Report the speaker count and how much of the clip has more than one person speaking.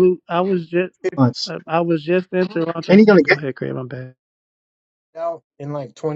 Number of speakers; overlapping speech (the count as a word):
two, about 8%